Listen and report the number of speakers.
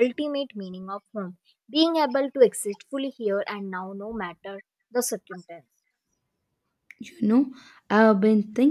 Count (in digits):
2